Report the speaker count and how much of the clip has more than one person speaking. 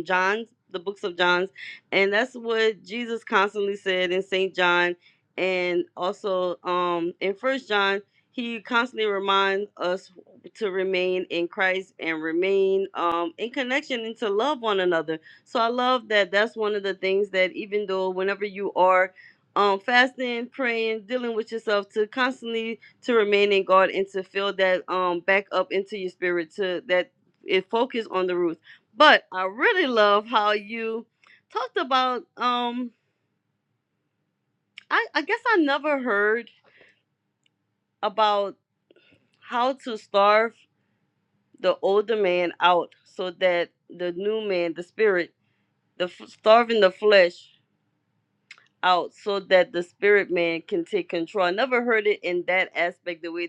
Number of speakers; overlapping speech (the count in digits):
1, no overlap